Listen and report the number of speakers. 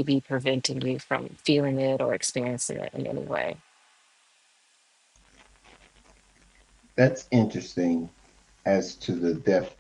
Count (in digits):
2